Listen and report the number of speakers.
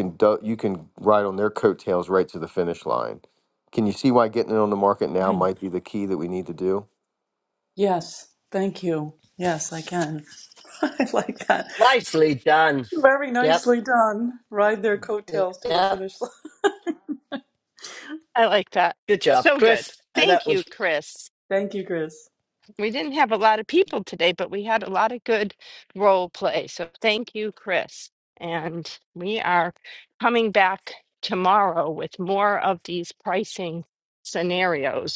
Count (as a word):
four